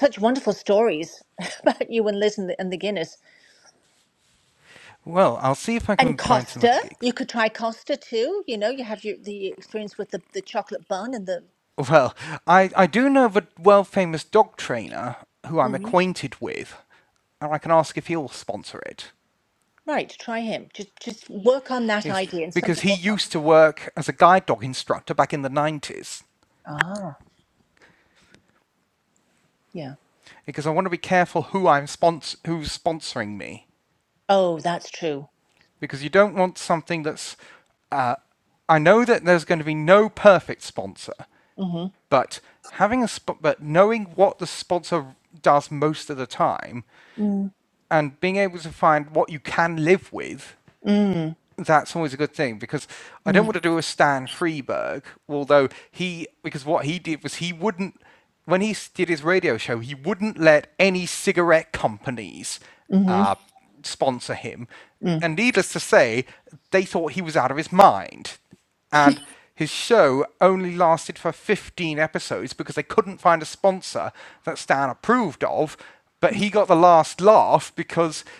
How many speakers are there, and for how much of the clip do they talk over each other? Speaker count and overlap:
two, about 3%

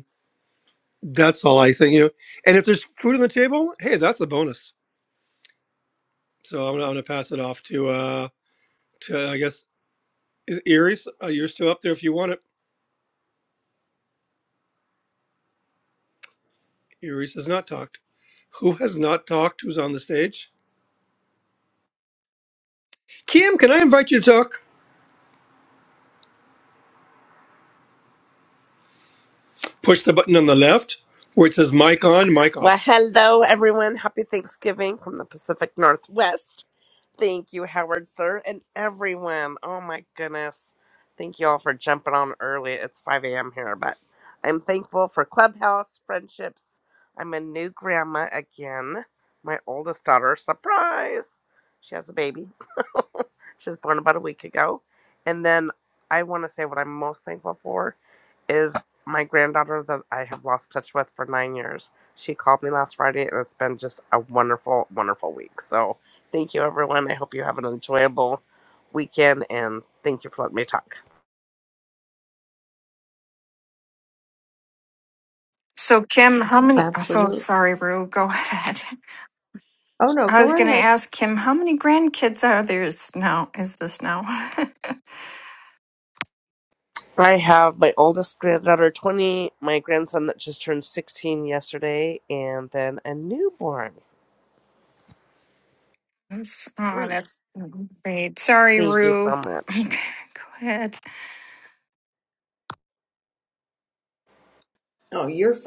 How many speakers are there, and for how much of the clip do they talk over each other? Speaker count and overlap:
four, about 3%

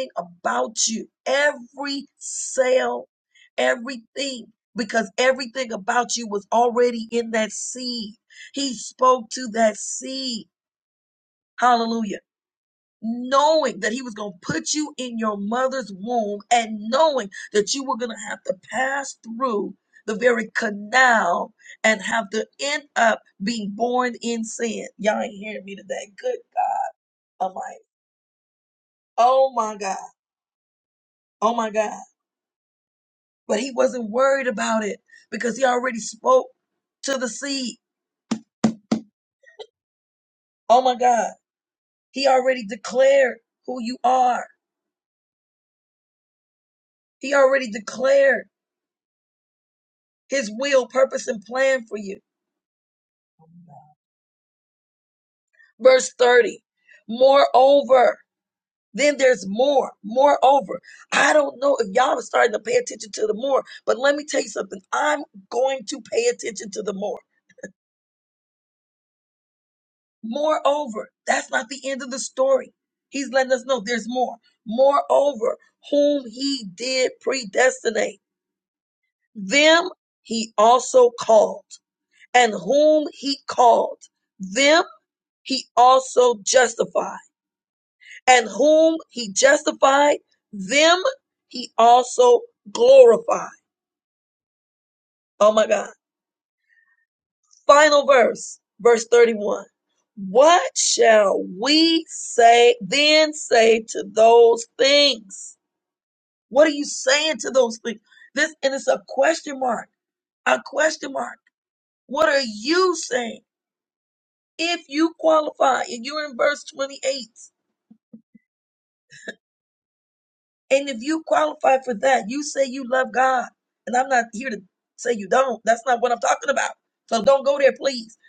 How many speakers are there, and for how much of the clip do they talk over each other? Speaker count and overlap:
one, no overlap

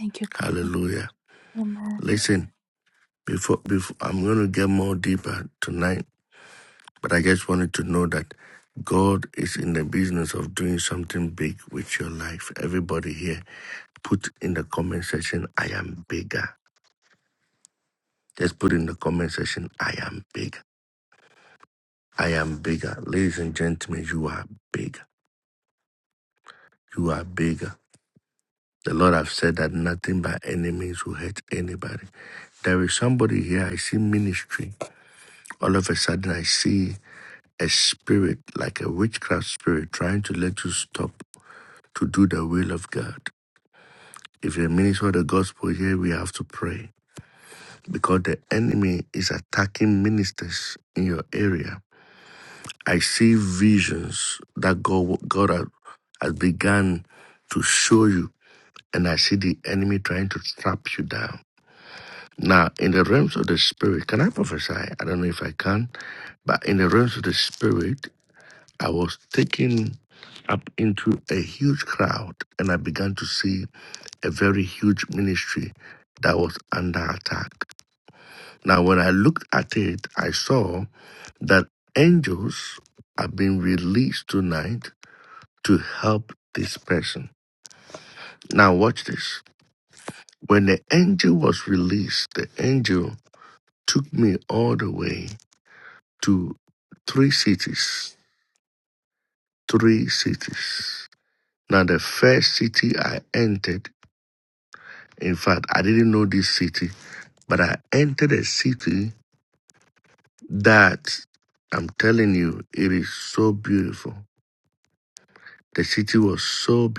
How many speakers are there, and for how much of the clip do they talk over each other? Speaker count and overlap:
two, under 1%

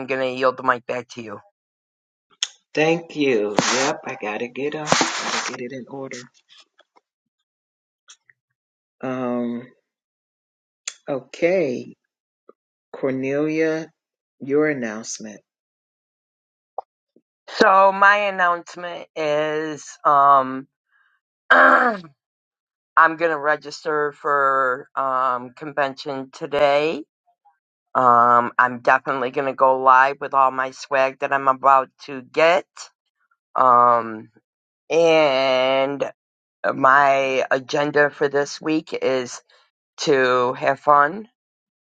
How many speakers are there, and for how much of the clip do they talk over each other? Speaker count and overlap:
two, no overlap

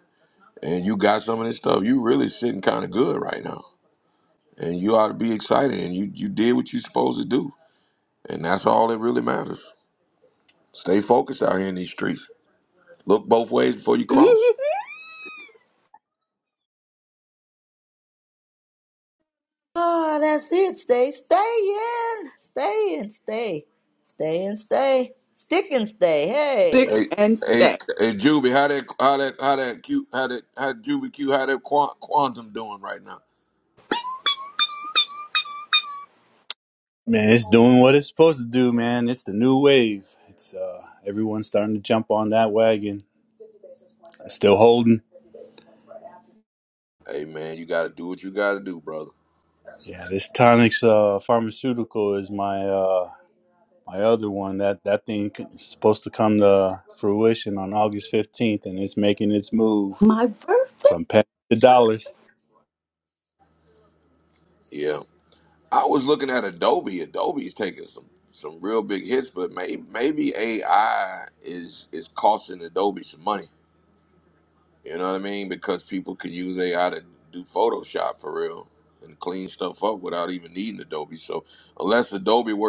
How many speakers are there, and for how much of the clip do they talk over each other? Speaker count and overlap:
four, about 1%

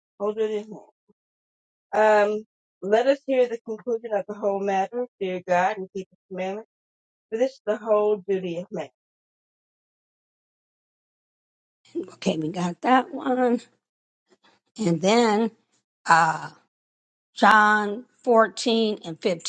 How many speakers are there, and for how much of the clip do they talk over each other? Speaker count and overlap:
two, no overlap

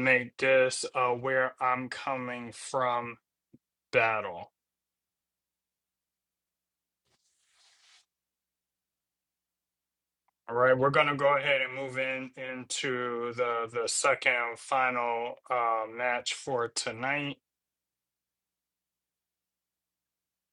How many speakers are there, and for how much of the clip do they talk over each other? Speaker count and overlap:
one, no overlap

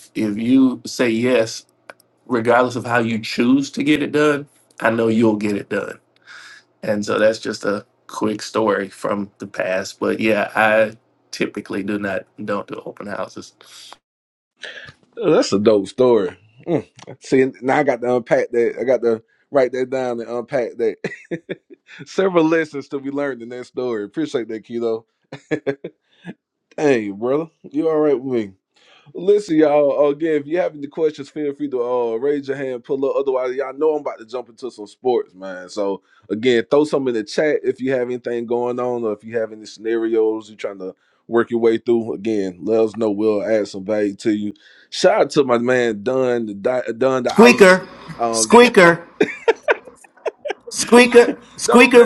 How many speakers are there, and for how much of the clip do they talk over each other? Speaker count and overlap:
three, about 2%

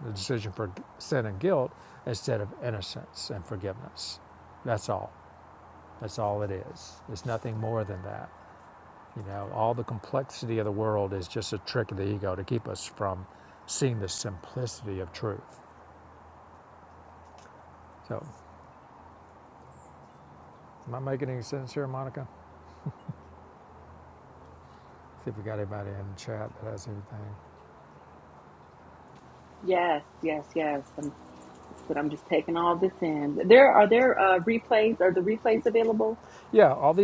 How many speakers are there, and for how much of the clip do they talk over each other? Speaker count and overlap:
two, no overlap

